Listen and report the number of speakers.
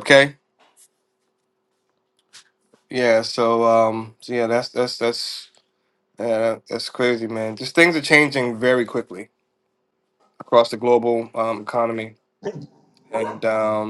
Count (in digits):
1